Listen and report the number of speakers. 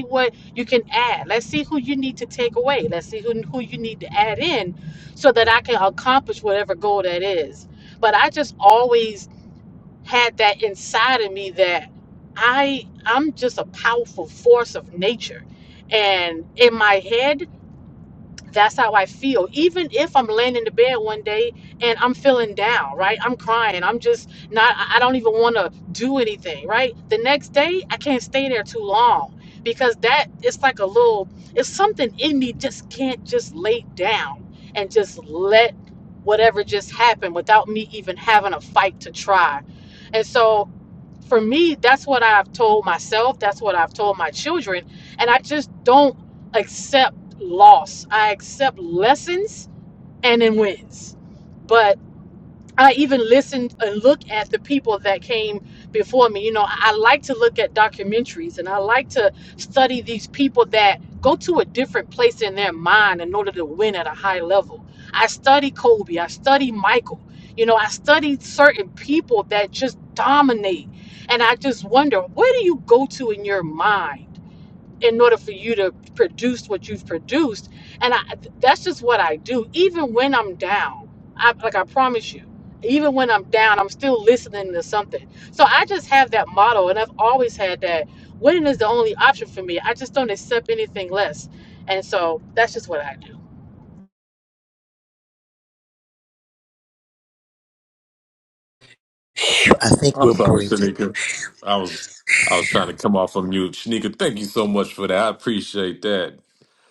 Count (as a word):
three